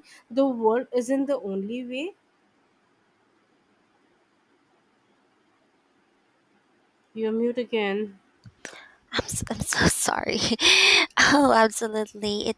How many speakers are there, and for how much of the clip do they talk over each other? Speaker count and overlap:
2, no overlap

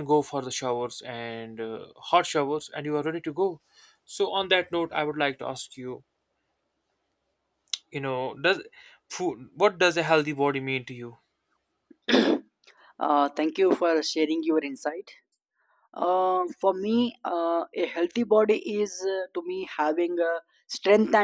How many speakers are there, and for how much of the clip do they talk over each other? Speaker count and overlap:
2, no overlap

